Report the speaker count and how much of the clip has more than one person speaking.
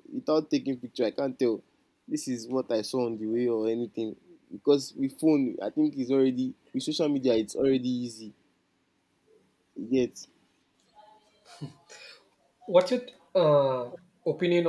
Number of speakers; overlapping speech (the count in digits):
2, no overlap